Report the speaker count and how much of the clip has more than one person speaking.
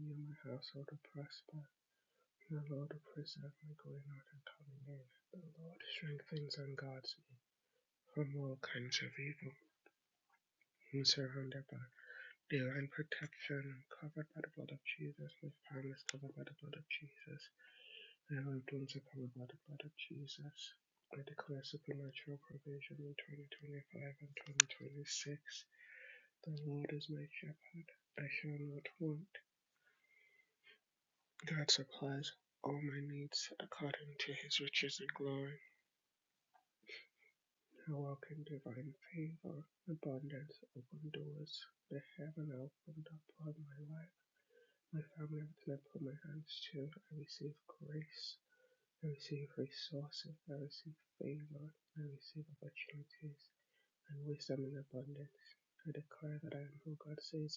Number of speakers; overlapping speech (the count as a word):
one, no overlap